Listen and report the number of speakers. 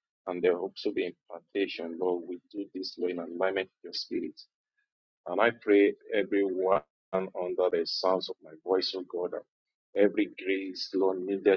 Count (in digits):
1